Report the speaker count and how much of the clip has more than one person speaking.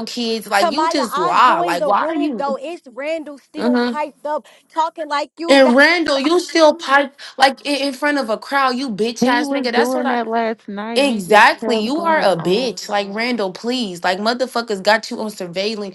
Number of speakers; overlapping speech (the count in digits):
3, about 36%